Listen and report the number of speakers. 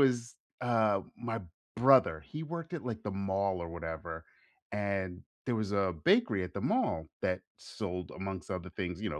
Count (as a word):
one